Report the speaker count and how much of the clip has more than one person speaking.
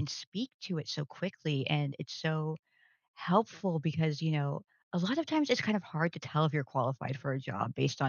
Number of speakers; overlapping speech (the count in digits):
1, no overlap